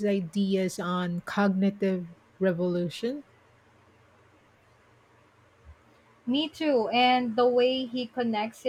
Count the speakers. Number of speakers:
two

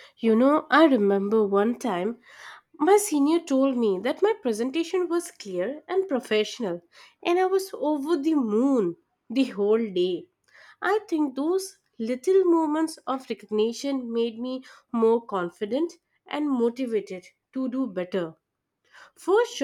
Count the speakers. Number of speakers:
one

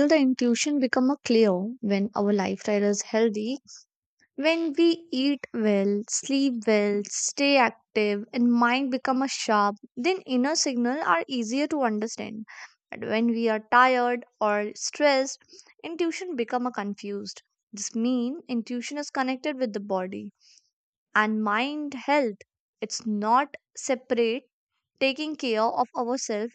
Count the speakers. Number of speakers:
one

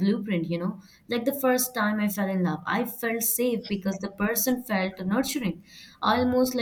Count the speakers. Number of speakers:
one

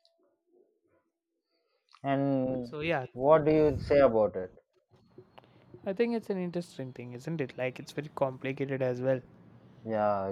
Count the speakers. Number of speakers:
two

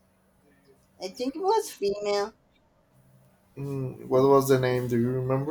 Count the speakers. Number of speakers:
two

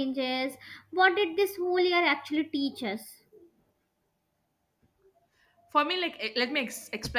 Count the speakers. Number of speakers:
two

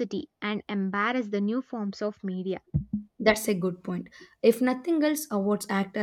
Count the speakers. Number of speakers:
two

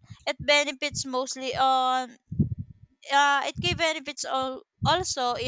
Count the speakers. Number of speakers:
one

